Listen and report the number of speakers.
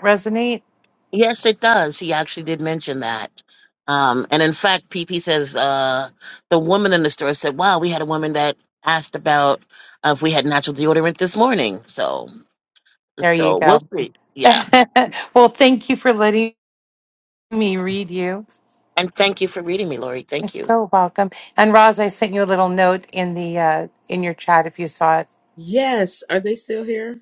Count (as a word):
three